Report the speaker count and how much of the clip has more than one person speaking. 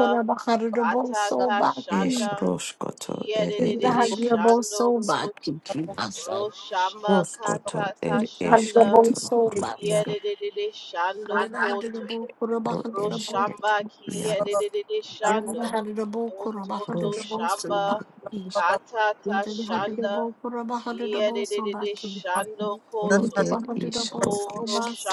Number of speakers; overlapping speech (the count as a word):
three, about 65%